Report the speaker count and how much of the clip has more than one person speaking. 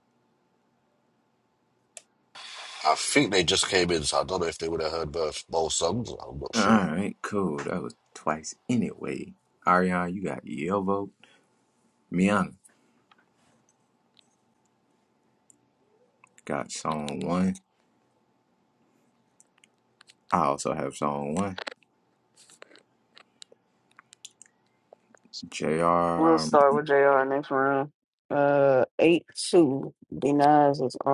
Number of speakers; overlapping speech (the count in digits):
3, about 2%